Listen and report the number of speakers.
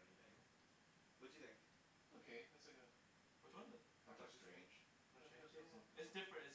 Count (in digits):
3